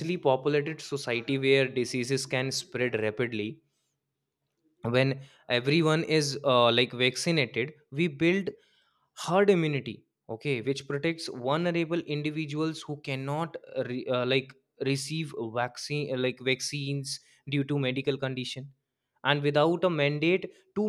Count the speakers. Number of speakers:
1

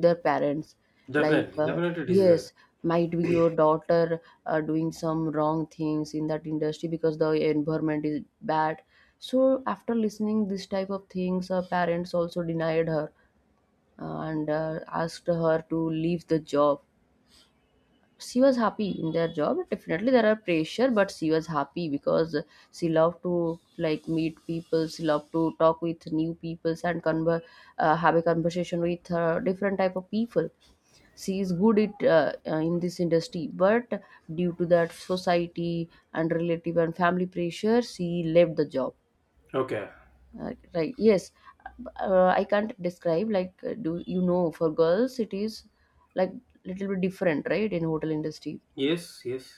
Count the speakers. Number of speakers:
2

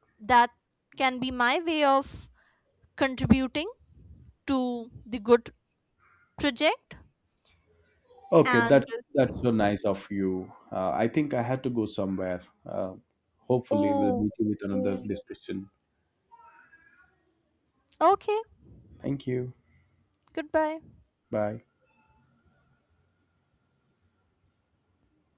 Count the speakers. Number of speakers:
2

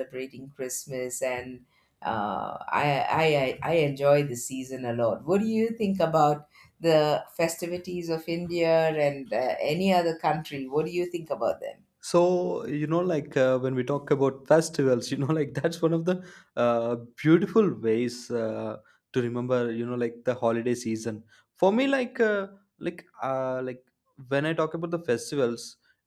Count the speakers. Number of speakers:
2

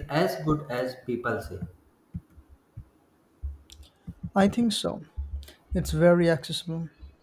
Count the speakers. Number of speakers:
2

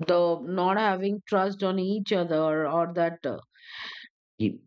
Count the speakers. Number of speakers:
1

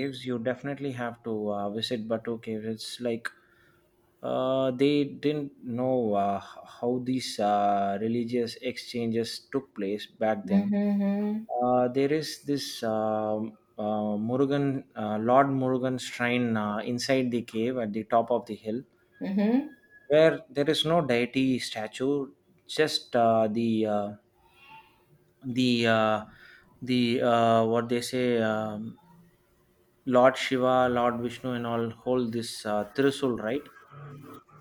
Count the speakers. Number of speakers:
2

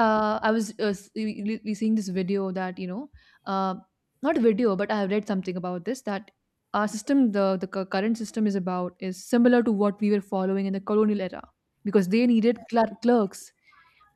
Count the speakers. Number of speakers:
1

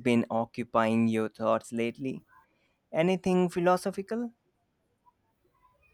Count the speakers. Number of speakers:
1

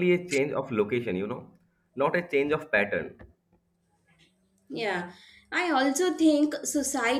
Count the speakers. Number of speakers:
2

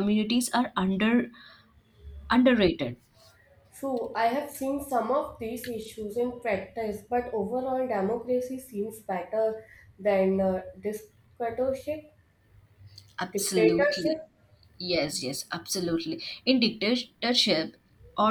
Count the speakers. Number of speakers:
2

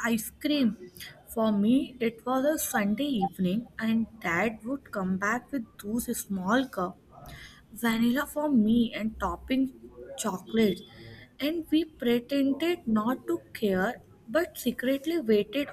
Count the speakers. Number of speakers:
1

